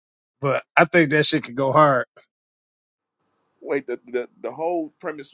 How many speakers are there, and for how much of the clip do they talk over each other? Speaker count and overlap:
two, no overlap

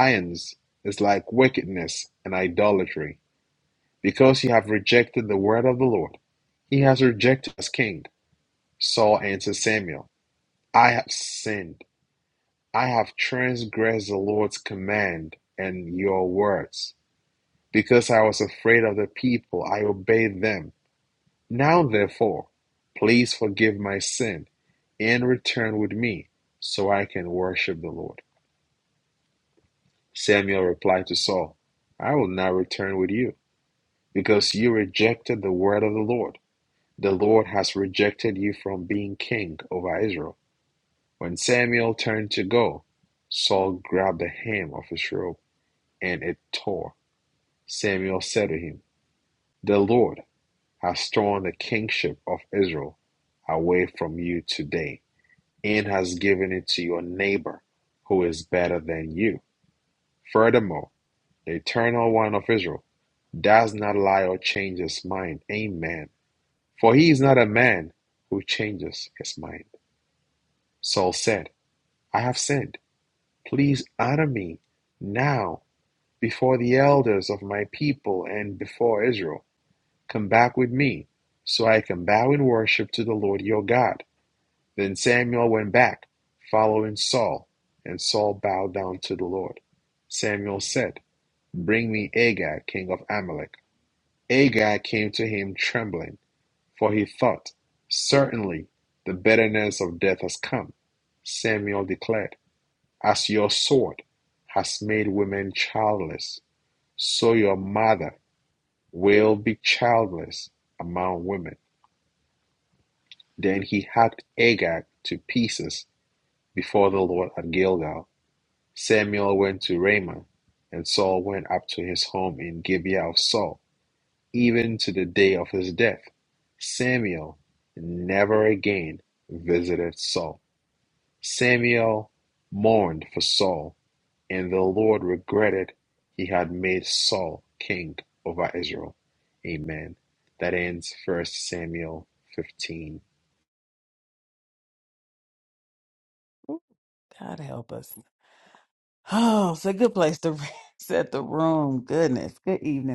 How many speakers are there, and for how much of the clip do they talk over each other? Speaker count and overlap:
two, no overlap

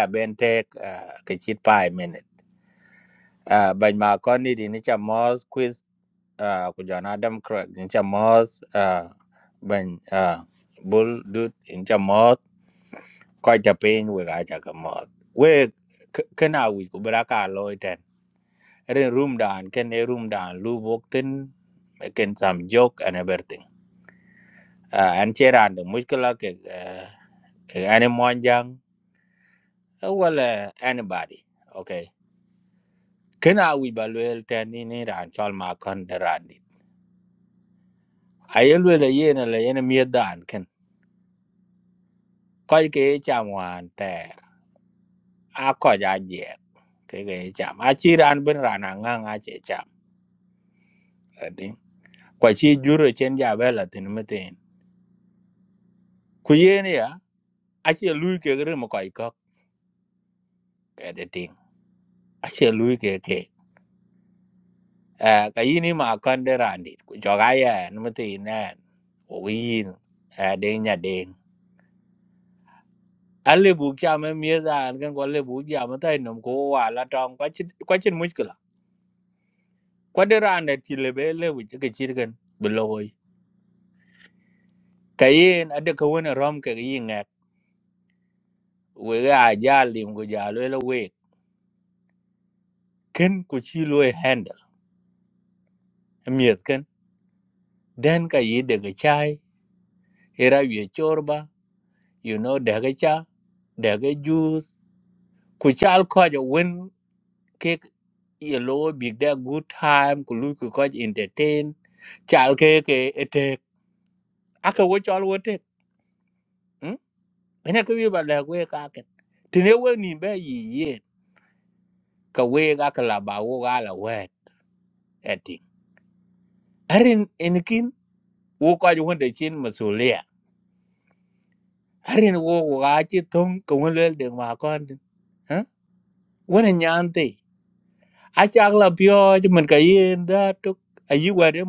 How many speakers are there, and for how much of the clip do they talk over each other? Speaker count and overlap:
one, no overlap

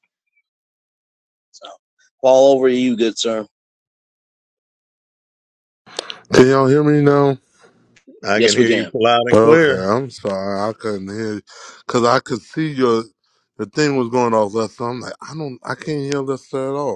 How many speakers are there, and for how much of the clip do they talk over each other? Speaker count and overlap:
three, about 6%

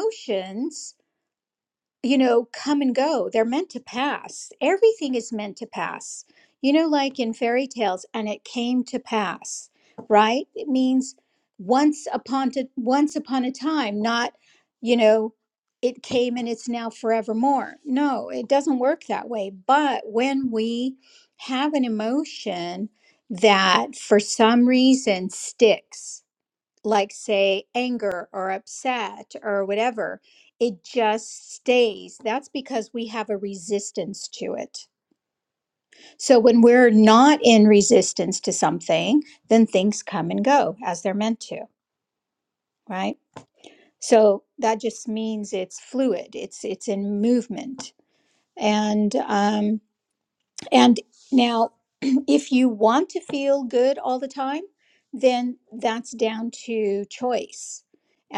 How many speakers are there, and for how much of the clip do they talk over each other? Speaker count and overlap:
one, no overlap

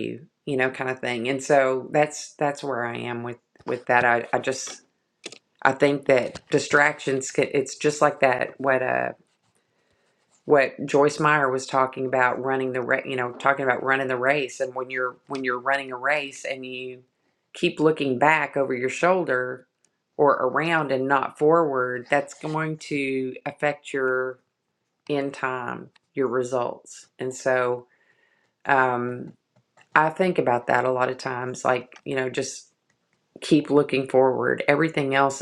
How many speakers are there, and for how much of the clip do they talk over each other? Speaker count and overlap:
one, no overlap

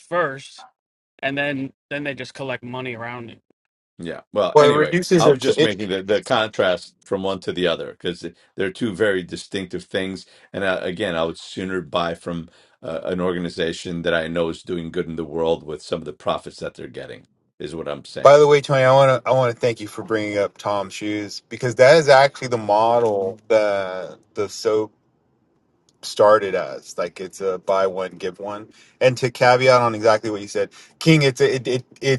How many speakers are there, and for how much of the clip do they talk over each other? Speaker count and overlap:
three, about 4%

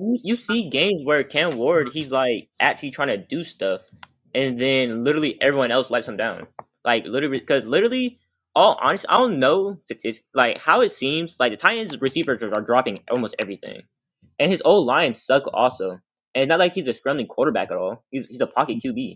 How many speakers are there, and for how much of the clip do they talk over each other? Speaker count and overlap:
one, no overlap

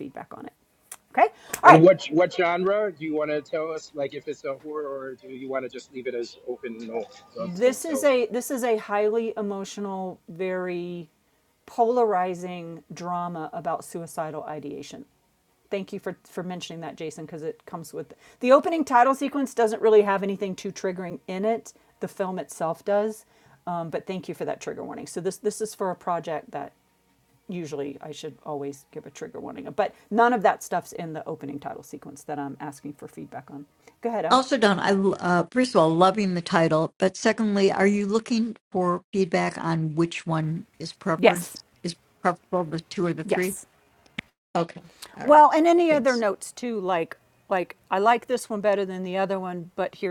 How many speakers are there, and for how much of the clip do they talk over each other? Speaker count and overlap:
three, about 4%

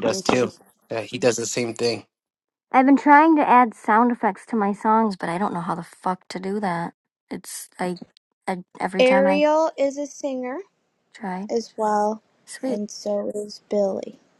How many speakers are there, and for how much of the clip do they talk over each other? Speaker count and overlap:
three, about 7%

